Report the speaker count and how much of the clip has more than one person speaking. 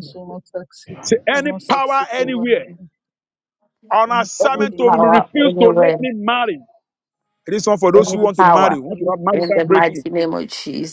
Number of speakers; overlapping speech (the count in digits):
3, about 50%